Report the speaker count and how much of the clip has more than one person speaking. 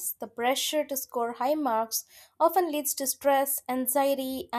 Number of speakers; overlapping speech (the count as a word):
one, no overlap